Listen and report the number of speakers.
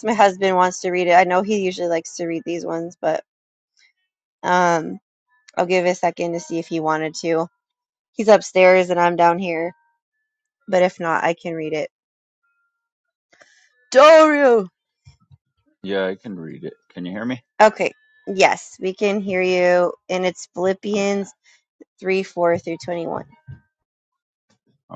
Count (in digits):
2